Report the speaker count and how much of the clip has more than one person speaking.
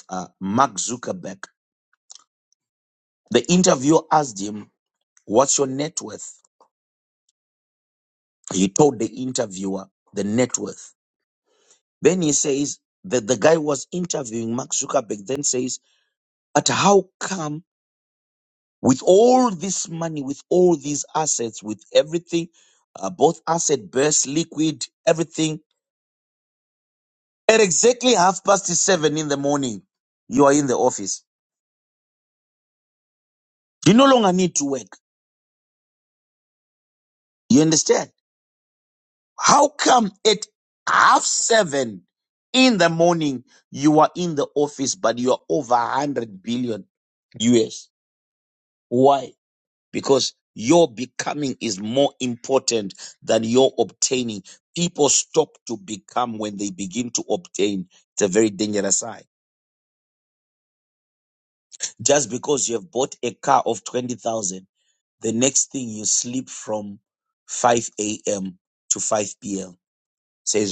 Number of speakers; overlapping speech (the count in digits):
1, no overlap